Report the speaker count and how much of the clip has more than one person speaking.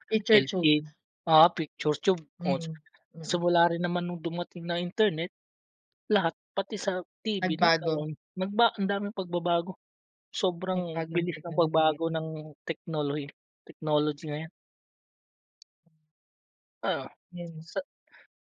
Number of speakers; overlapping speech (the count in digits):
2, about 13%